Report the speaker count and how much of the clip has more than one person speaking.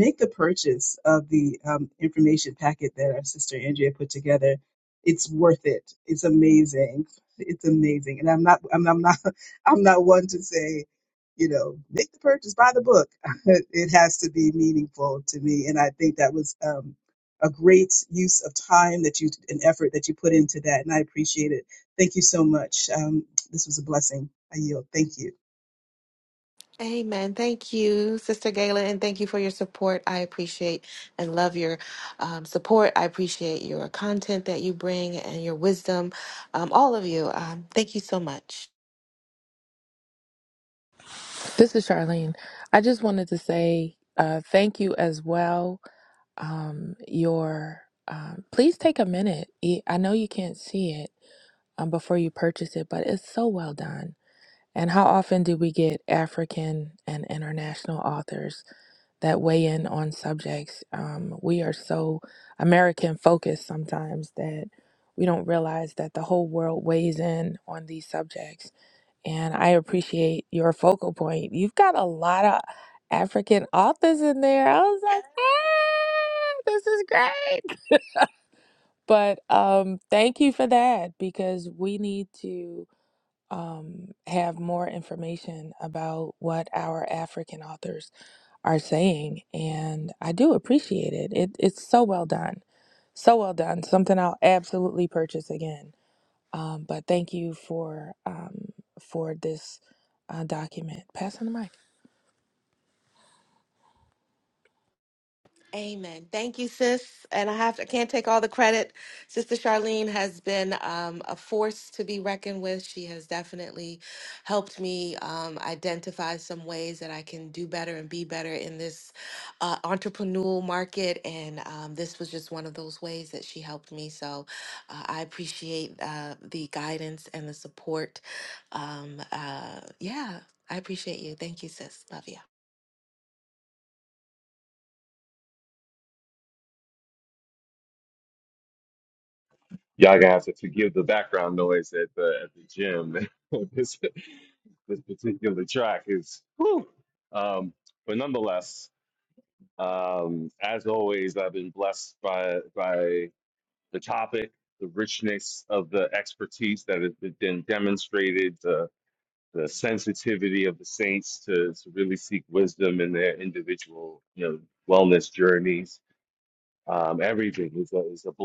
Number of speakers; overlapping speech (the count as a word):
four, no overlap